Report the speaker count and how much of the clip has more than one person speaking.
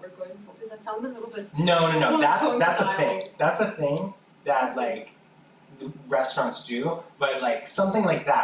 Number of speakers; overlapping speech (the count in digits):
2, about 20%